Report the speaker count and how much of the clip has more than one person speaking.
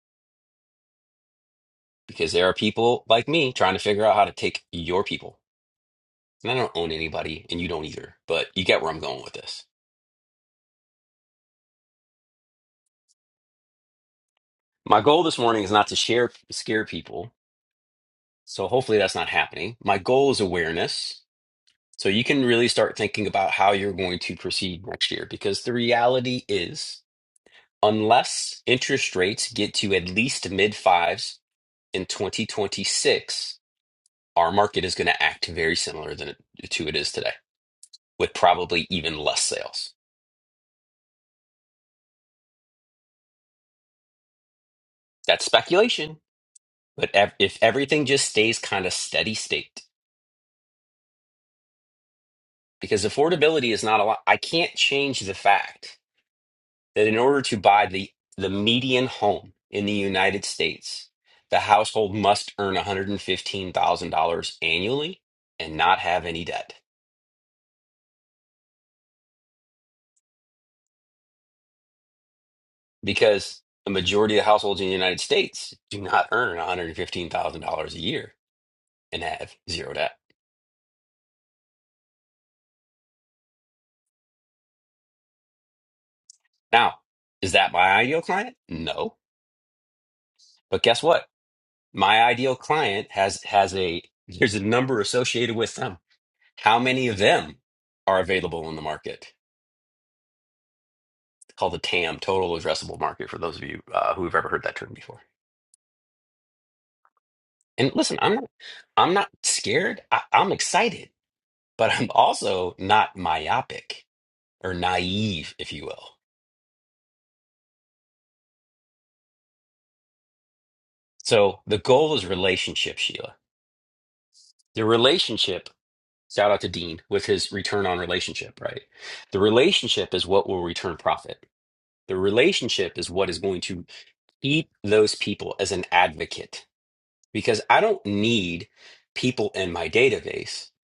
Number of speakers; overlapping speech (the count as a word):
one, no overlap